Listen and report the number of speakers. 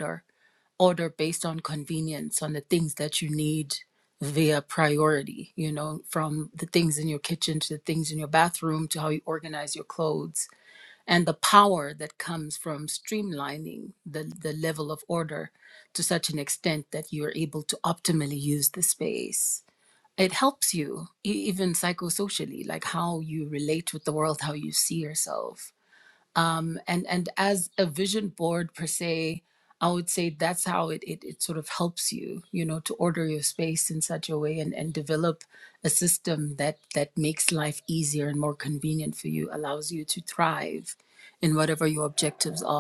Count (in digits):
1